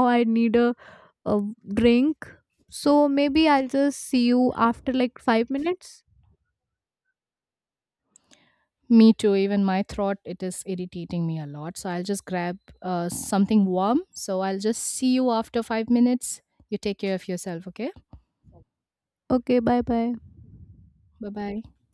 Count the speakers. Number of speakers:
two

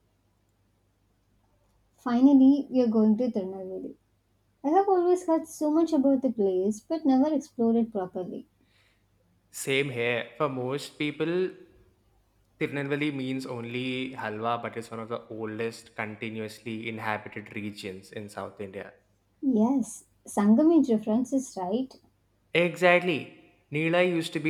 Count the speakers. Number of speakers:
two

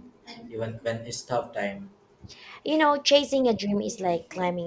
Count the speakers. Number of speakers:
two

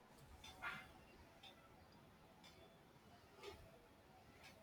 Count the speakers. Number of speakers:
zero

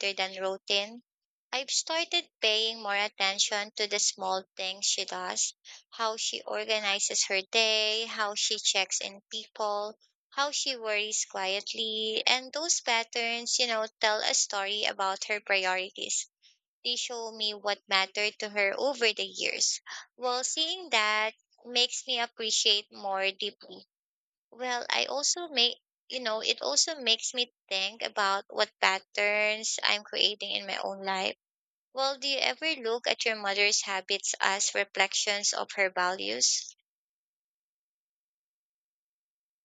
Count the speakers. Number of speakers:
one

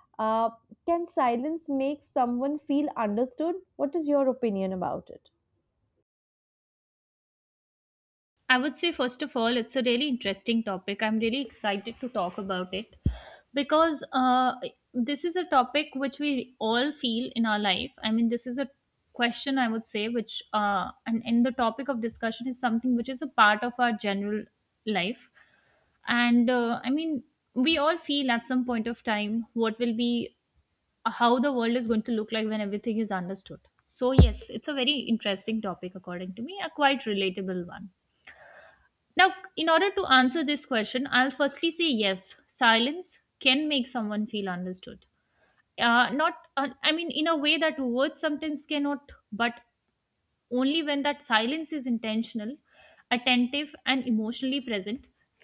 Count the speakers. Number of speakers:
two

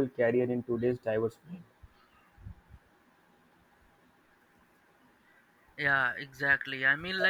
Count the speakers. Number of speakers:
two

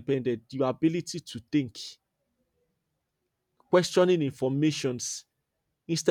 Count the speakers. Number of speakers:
one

